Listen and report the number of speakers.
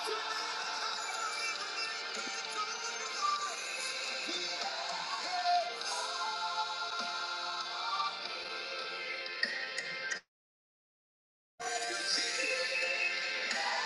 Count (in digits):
0